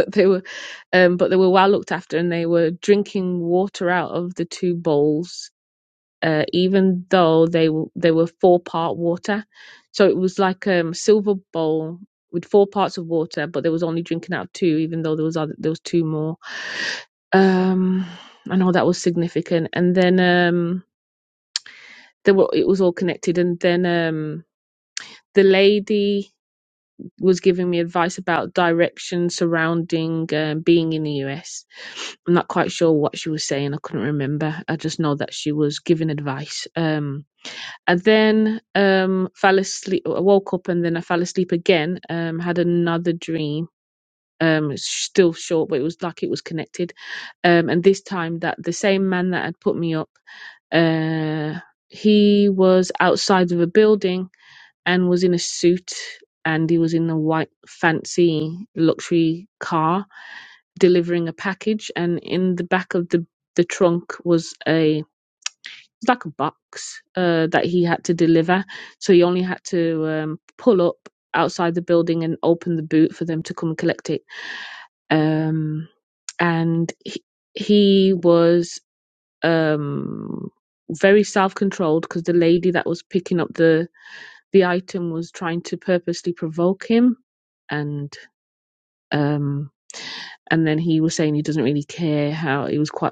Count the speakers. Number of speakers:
1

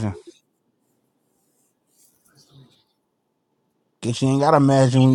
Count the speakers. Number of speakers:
1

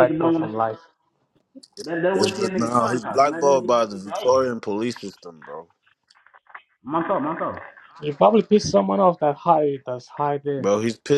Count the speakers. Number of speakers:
3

